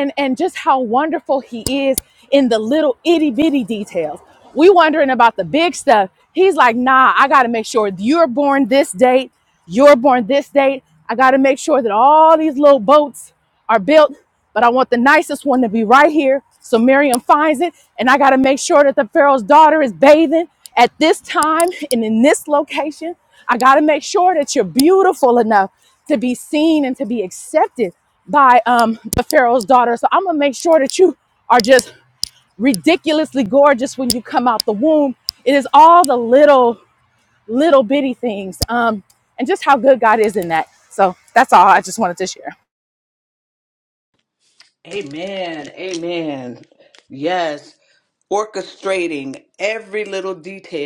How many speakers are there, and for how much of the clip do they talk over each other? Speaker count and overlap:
2, no overlap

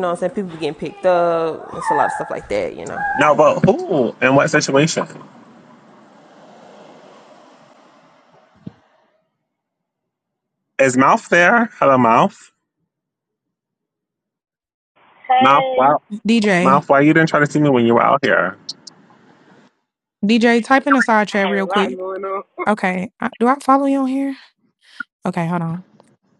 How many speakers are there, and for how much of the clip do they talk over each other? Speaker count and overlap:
4, about 5%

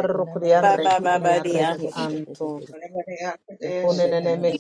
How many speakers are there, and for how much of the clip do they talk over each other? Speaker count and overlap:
3, about 22%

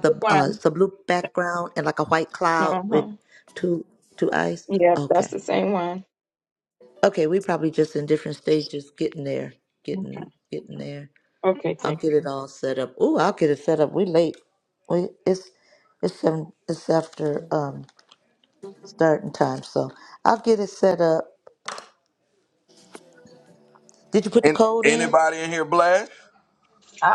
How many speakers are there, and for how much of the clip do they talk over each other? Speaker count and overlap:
3, about 9%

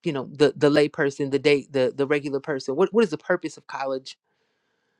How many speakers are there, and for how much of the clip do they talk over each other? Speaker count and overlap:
1, no overlap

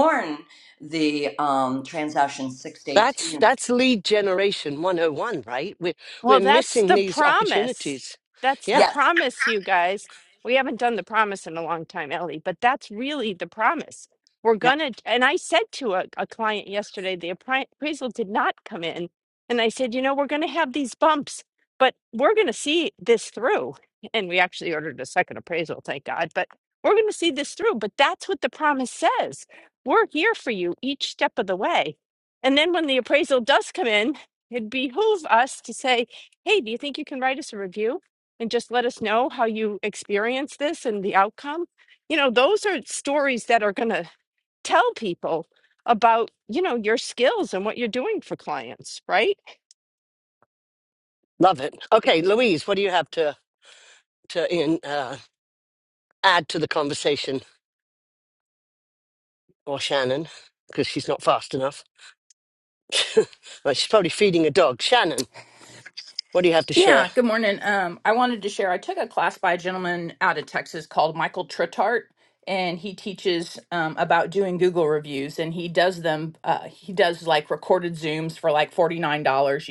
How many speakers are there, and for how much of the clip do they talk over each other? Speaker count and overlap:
4, about 3%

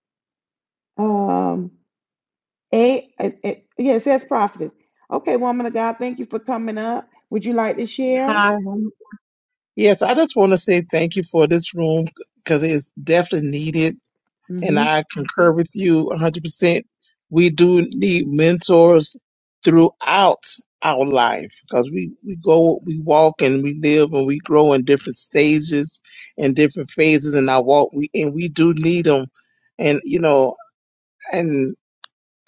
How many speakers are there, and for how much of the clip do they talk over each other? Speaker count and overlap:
2, about 1%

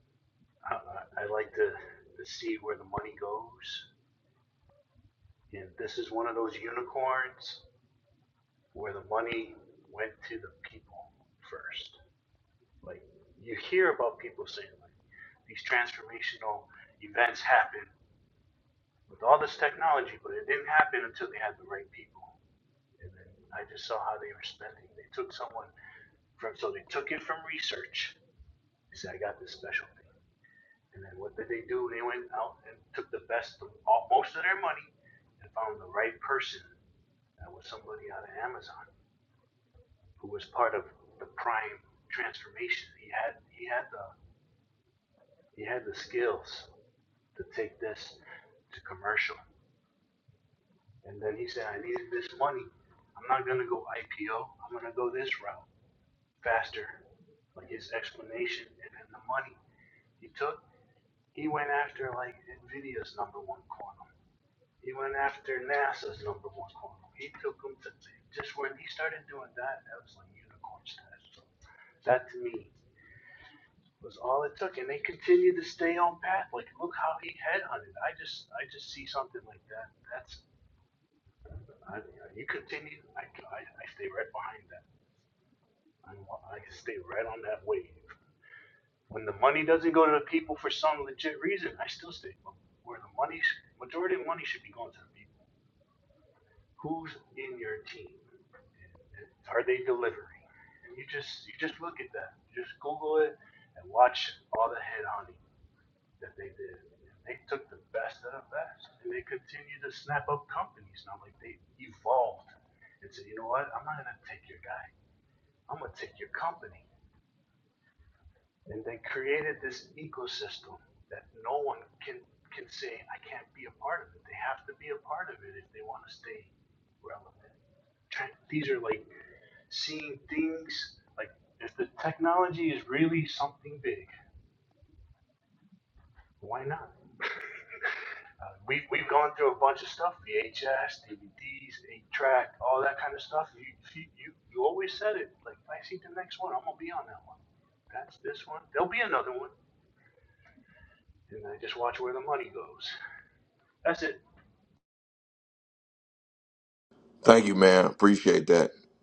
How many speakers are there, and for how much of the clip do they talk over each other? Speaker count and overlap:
2, no overlap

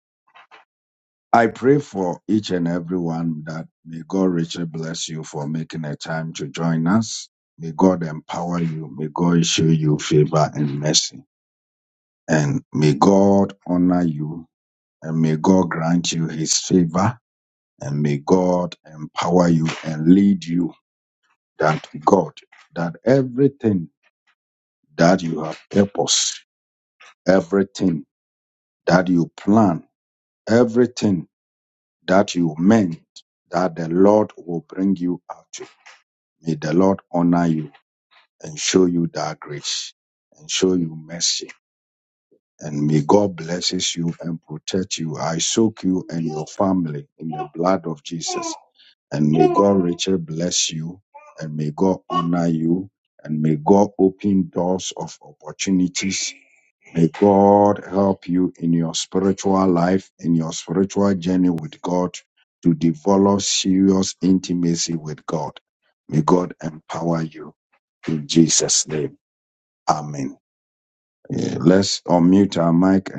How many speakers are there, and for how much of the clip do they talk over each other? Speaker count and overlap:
1, no overlap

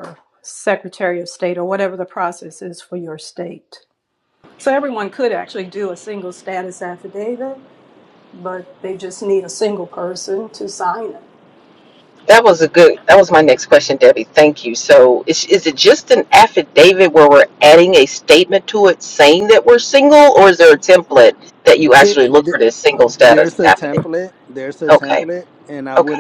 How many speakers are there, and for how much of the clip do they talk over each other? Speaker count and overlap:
3, about 6%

